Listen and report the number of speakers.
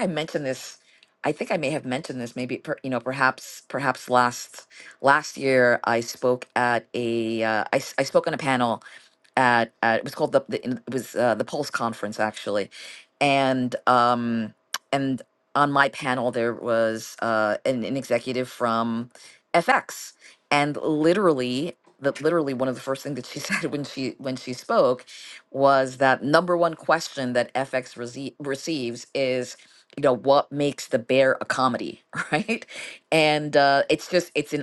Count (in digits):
1